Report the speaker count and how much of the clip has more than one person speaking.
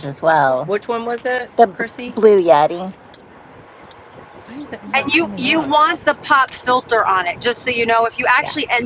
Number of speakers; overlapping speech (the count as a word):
three, about 17%